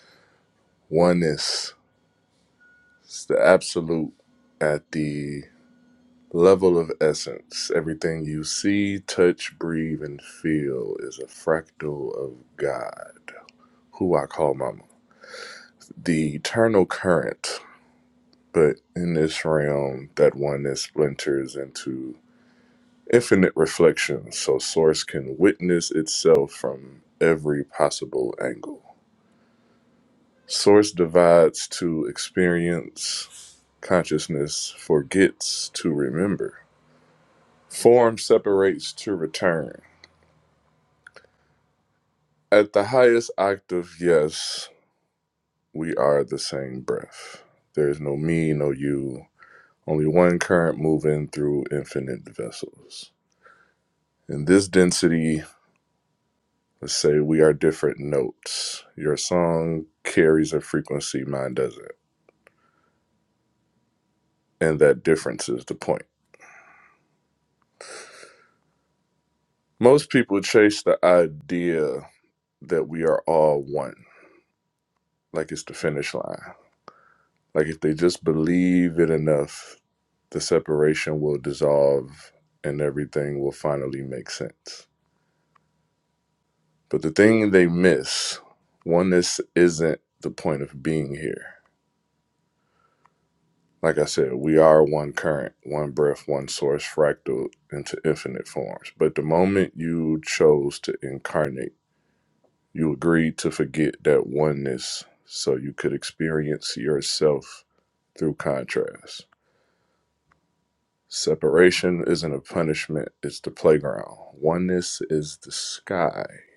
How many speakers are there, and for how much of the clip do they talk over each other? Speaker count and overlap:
one, no overlap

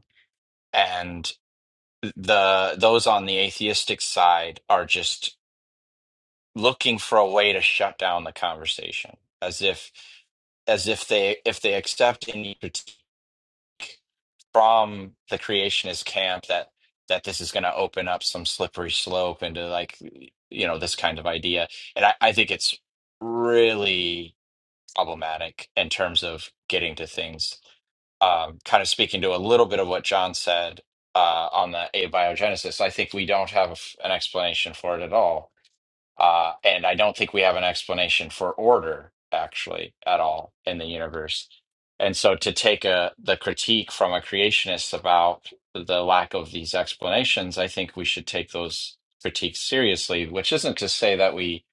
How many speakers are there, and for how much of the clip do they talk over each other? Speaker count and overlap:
one, no overlap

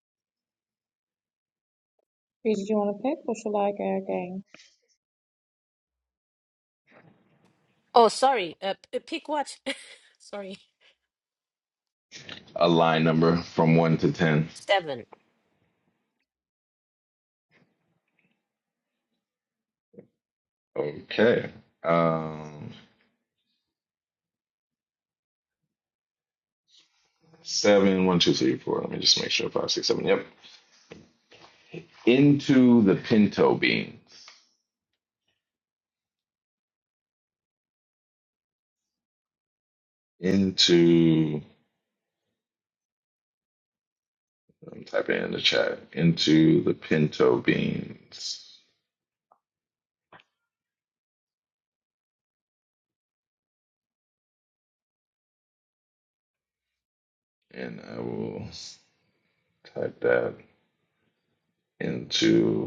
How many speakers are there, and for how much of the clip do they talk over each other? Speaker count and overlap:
three, no overlap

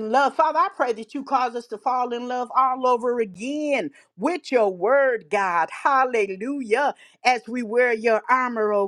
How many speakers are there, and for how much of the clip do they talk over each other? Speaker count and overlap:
one, no overlap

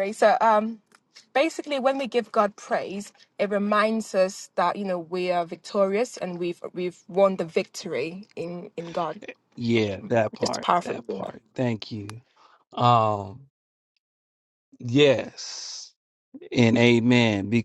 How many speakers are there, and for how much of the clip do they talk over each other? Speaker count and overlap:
two, about 5%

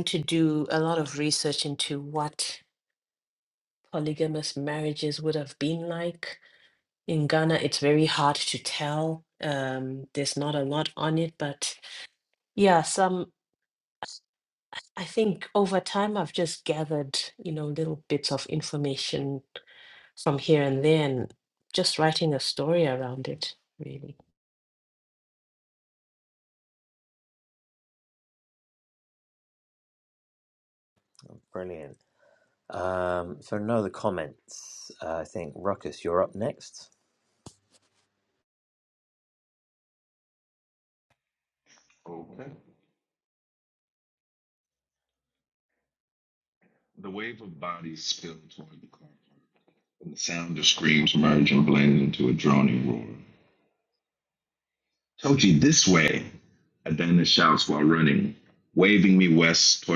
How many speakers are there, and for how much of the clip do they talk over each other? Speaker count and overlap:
three, no overlap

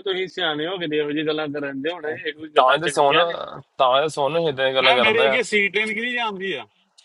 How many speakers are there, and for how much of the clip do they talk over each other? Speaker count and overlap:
three, about 16%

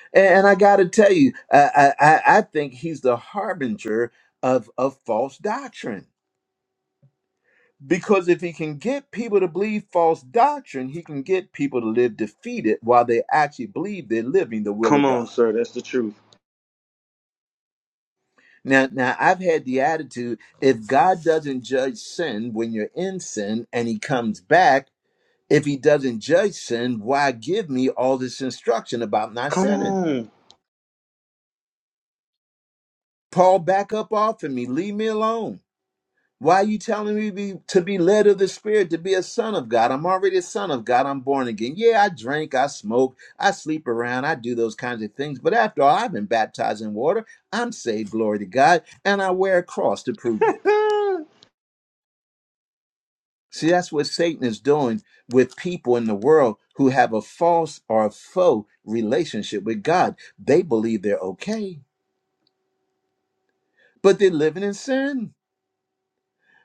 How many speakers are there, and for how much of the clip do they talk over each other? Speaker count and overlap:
two, about 1%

